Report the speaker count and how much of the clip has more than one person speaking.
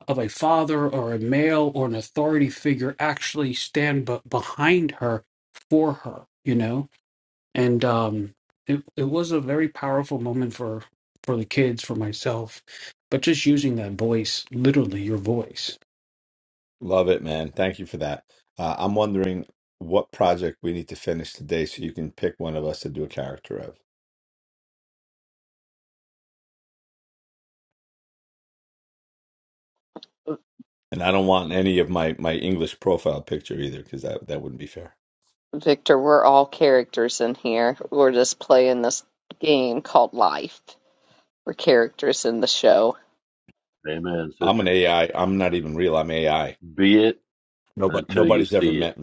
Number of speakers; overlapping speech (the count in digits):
4, about 3%